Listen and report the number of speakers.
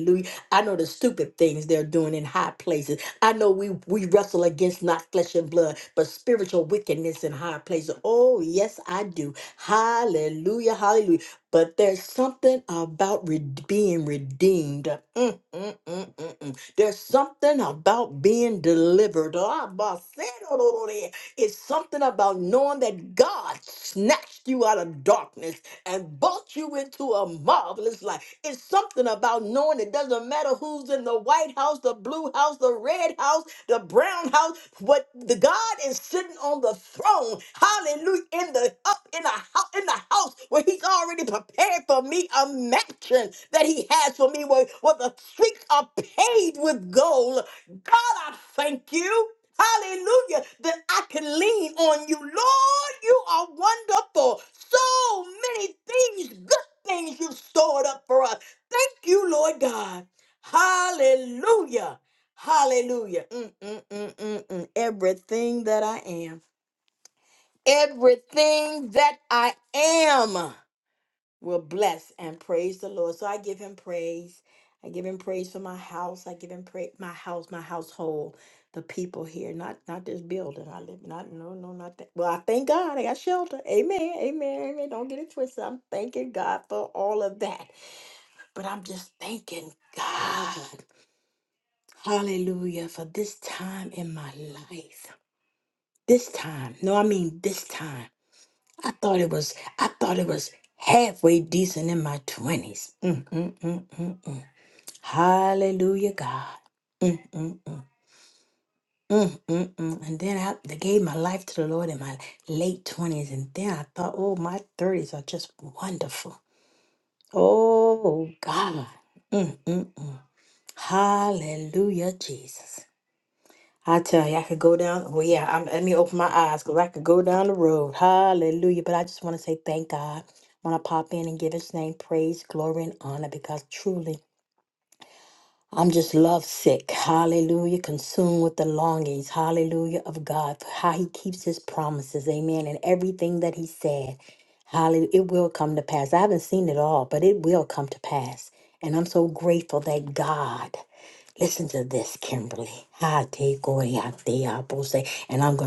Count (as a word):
one